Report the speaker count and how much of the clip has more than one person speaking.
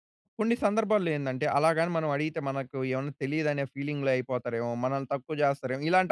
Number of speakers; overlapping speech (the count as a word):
one, no overlap